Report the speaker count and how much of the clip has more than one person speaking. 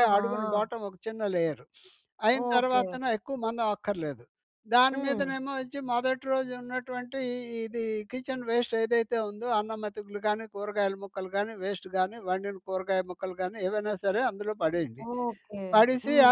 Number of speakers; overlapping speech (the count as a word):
two, about 12%